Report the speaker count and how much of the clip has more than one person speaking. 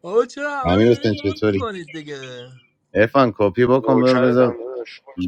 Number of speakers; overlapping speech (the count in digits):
3, about 33%